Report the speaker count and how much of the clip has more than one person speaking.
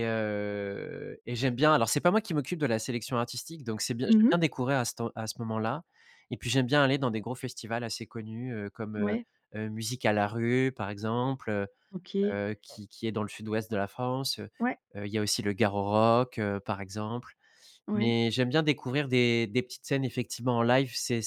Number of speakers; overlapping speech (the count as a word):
two, about 4%